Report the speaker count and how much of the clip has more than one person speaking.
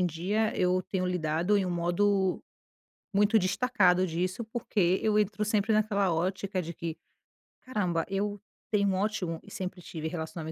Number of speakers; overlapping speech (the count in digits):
1, no overlap